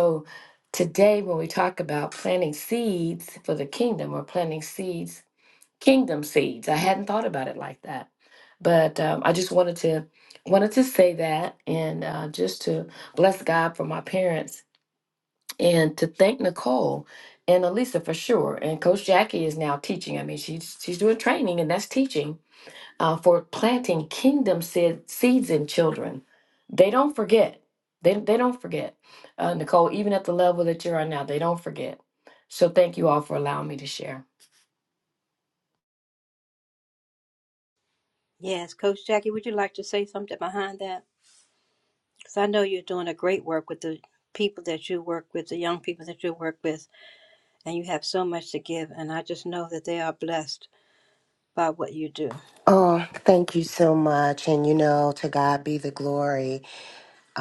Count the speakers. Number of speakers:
3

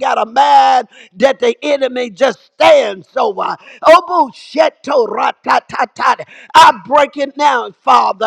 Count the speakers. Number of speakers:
1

